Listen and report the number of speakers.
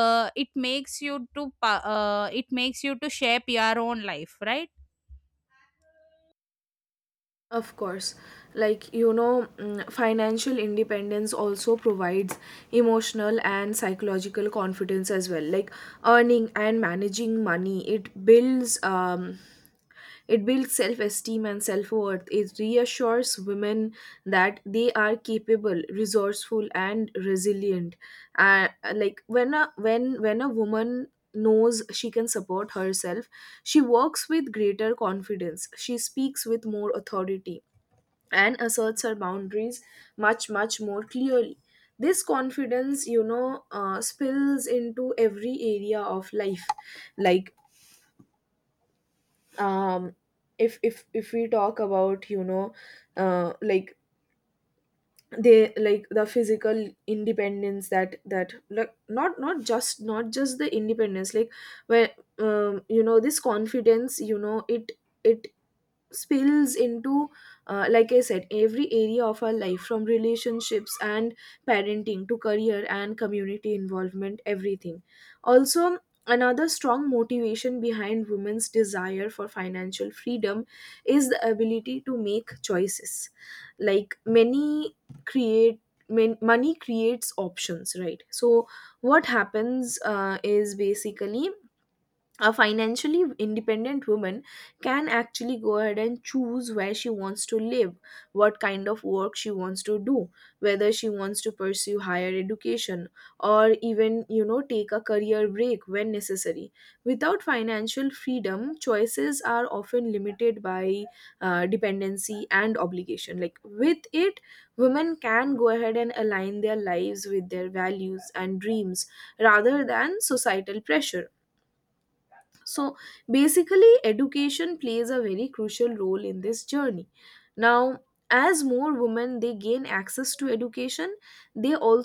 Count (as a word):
two